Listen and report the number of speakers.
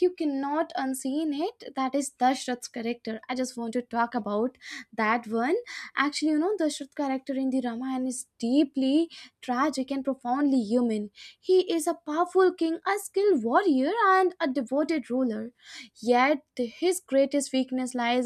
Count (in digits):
1